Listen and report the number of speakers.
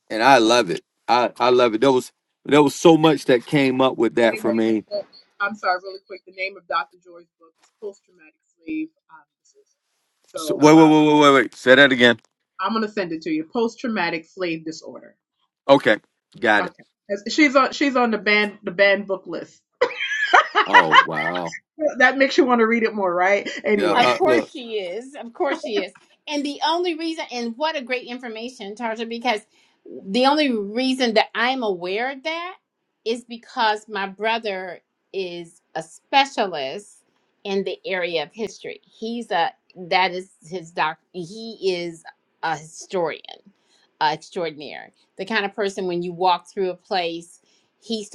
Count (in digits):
3